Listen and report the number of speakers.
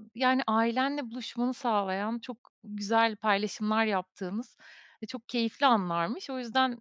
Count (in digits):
1